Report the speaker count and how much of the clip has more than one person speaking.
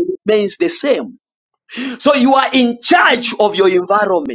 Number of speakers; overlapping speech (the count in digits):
1, no overlap